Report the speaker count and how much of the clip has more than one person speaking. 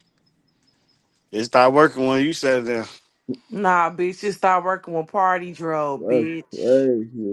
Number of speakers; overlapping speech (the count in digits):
3, about 11%